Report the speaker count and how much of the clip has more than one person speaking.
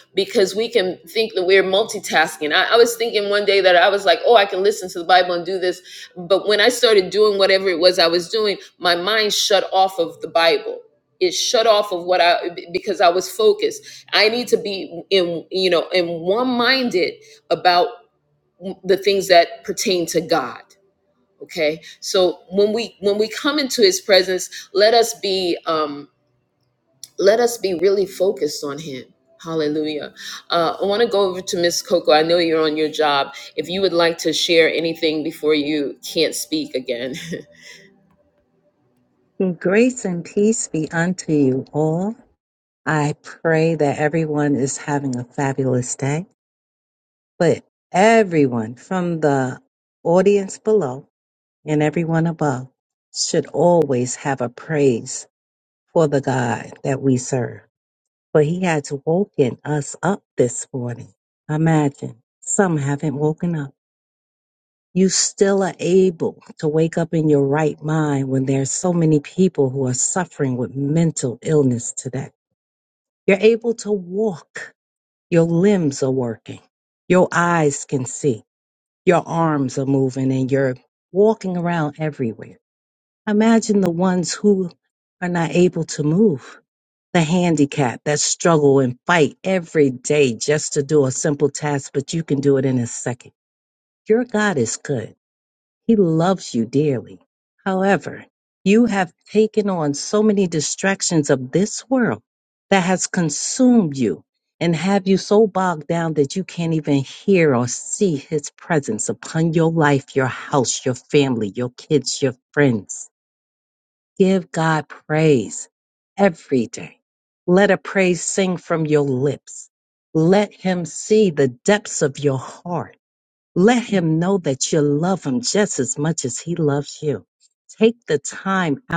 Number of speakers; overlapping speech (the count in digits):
2, no overlap